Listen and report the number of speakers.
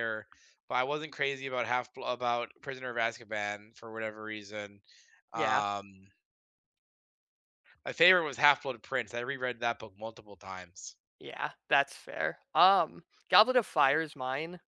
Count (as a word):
two